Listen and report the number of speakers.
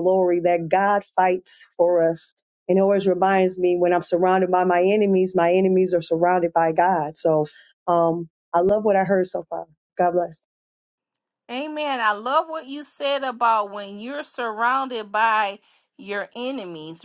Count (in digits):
2